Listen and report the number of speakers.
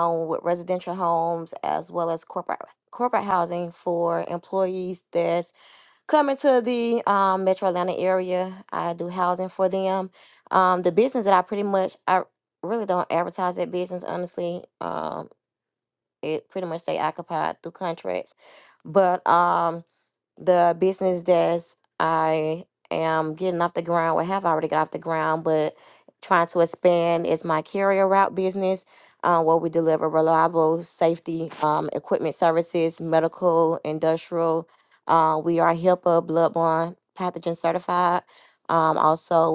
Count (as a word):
one